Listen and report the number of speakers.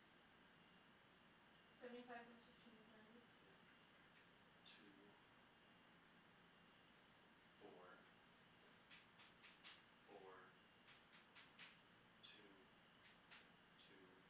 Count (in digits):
2